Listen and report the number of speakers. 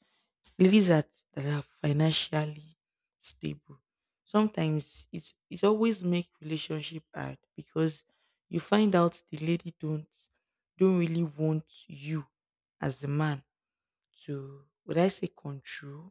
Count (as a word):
one